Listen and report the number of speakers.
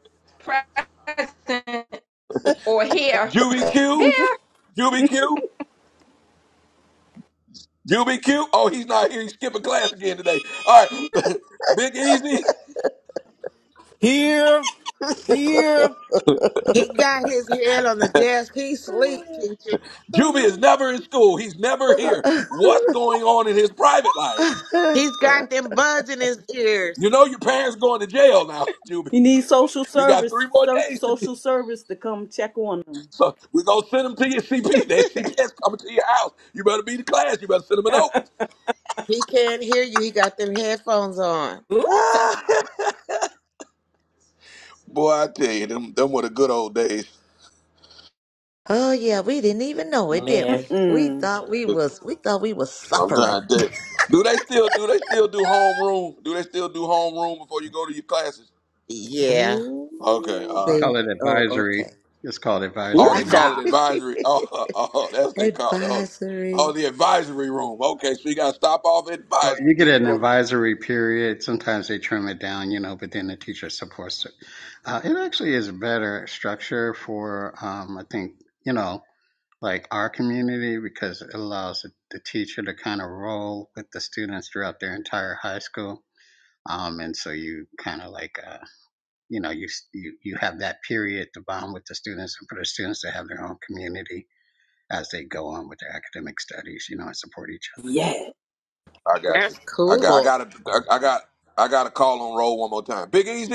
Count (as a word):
seven